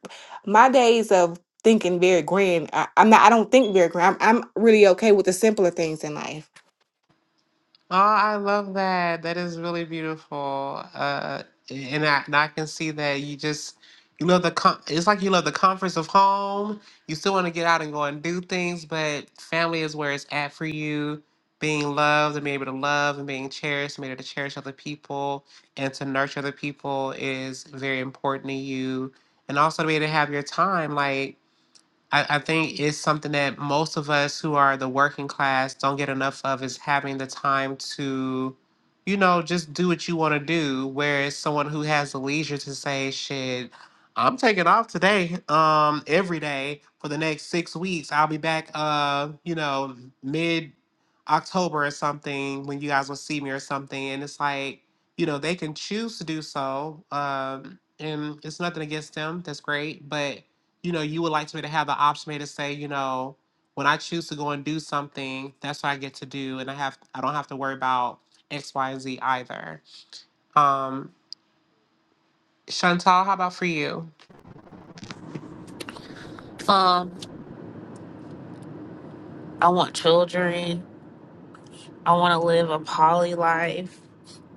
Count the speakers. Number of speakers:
3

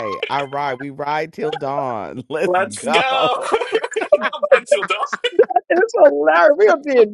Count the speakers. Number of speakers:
3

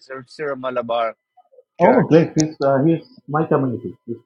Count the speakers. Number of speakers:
2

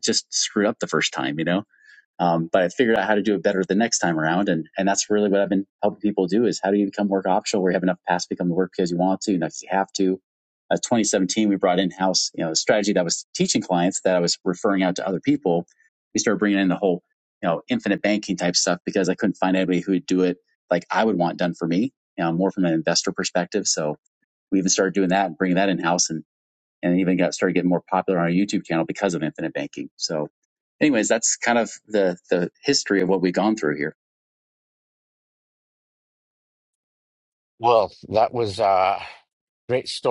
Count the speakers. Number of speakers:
2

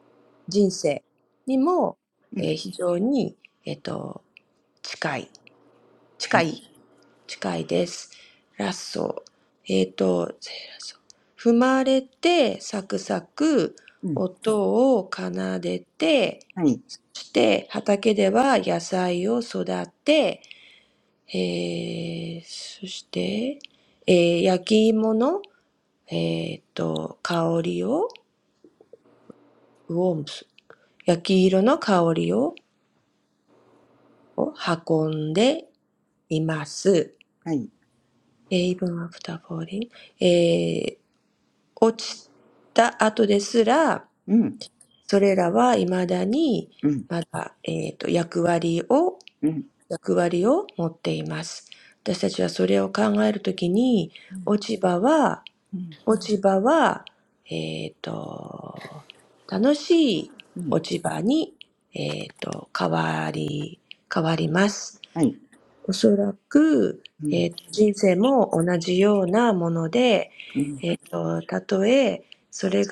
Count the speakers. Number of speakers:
2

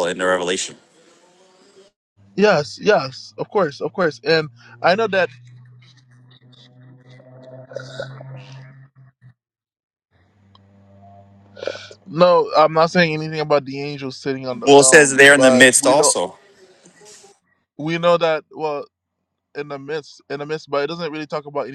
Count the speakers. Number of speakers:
2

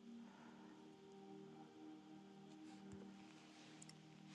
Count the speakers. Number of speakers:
0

